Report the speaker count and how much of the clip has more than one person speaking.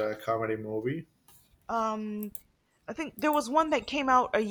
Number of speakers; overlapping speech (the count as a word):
two, no overlap